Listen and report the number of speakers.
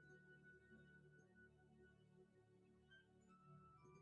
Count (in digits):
0